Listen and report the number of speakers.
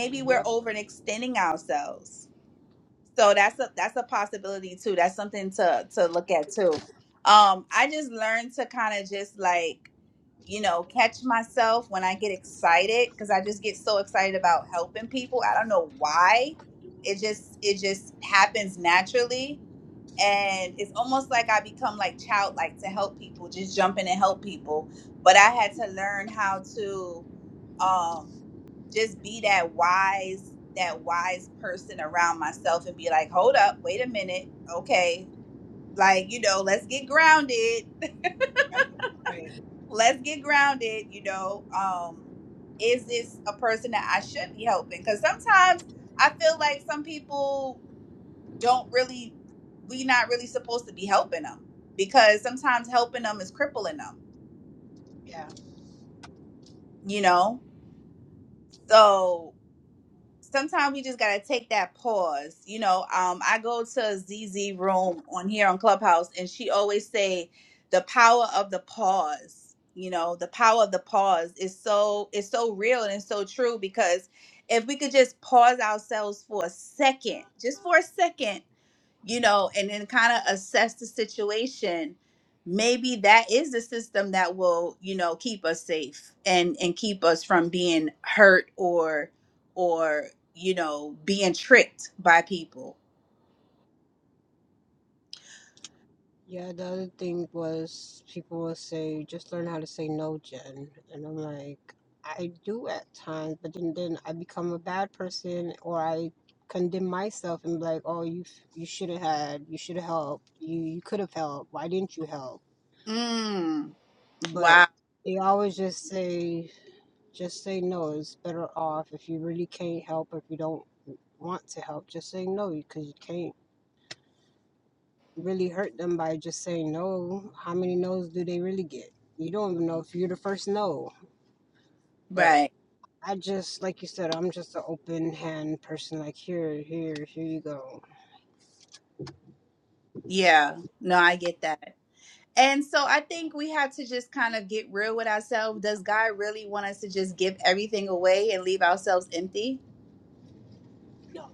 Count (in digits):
2